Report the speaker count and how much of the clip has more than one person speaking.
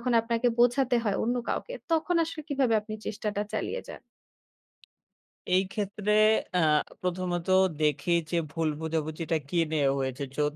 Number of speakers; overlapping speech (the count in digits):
2, no overlap